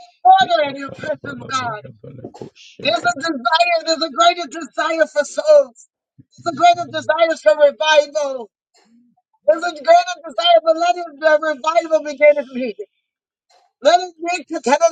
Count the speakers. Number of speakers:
one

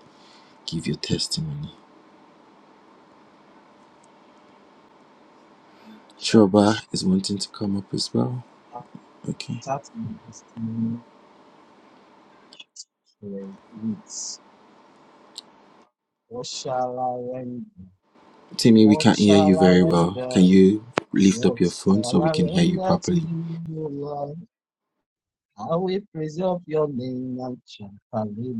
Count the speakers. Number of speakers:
two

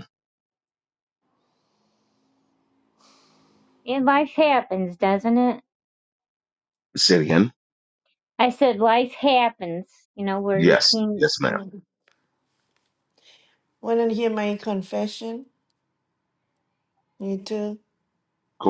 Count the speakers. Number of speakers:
three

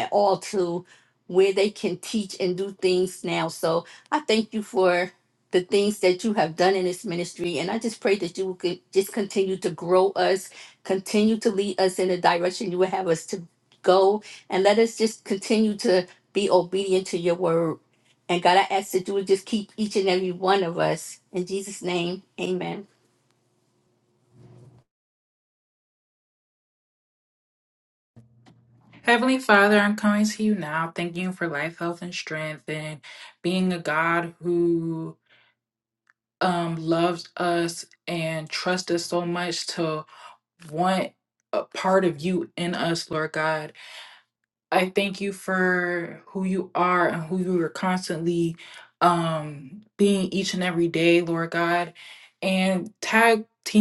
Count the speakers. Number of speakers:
two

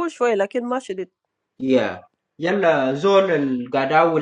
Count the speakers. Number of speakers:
two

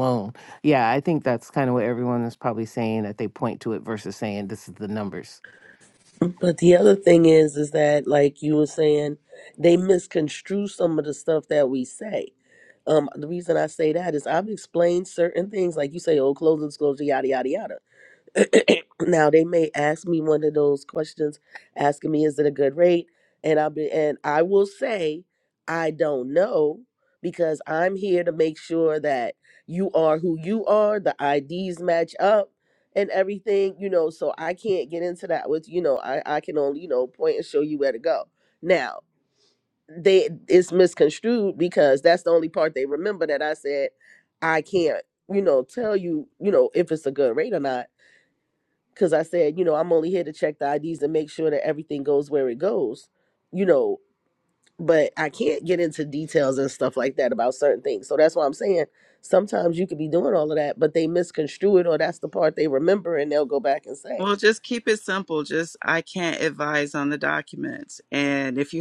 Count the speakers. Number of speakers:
three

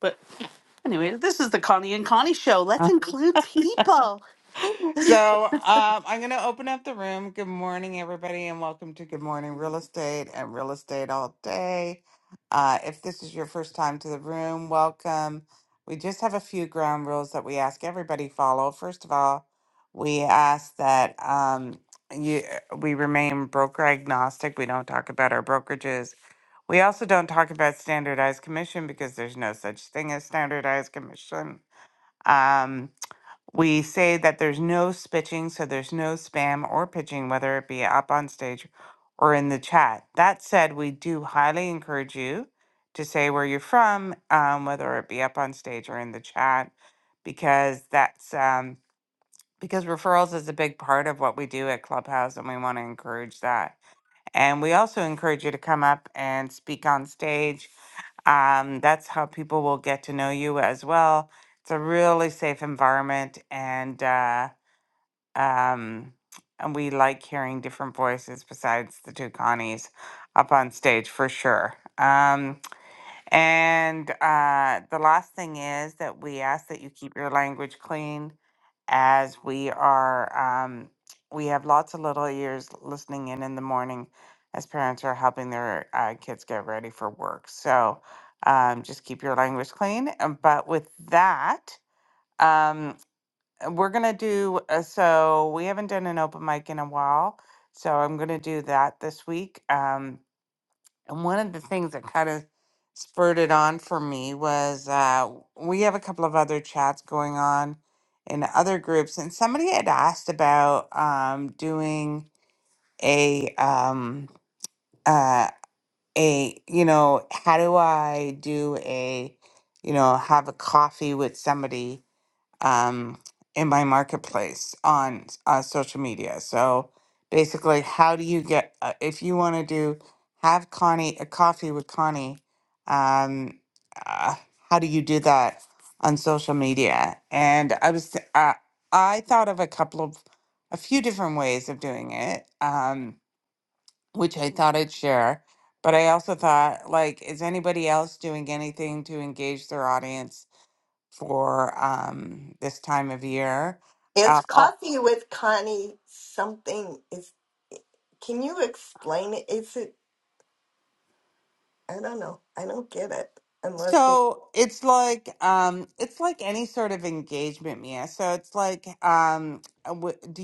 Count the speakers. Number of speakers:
three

